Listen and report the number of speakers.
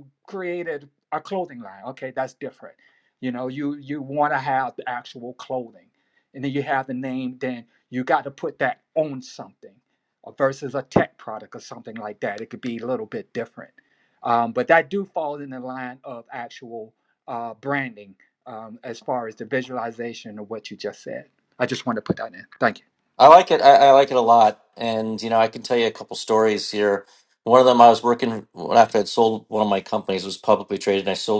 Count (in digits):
2